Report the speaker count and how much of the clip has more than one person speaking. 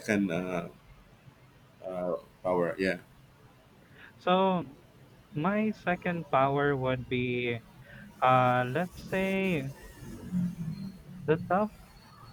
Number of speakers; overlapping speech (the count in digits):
2, no overlap